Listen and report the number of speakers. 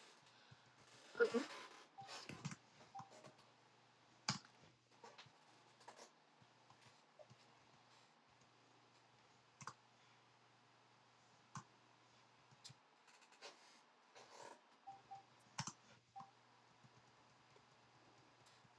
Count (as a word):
zero